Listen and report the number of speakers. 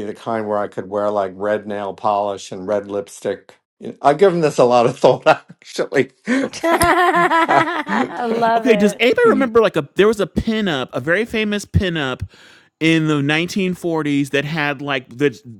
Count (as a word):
three